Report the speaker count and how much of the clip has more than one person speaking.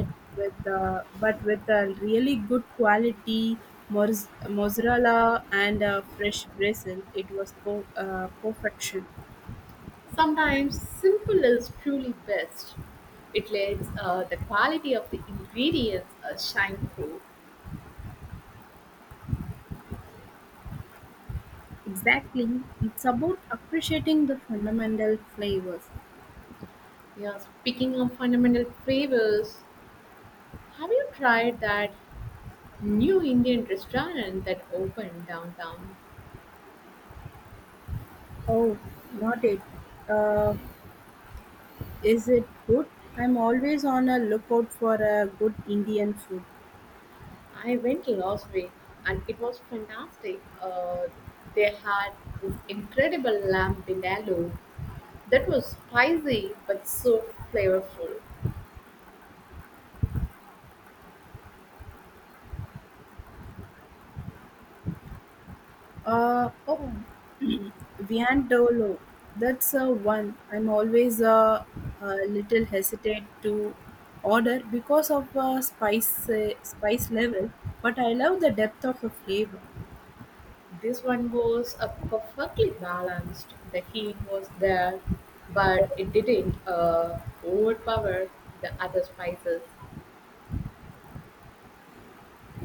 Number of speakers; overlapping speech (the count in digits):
2, no overlap